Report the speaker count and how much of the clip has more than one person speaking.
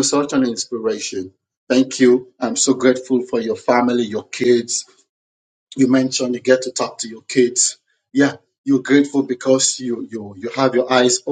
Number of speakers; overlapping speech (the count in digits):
1, no overlap